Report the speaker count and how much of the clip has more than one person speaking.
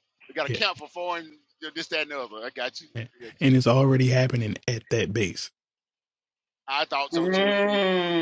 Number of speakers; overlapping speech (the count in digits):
3, about 6%